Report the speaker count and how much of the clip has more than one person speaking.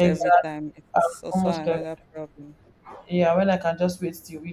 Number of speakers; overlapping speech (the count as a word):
two, about 26%